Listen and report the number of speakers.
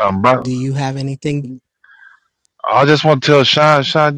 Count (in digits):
2